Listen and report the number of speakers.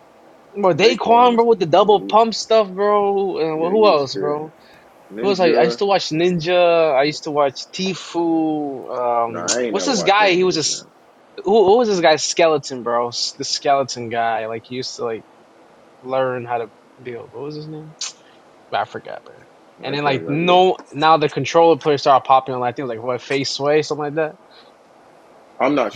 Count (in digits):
2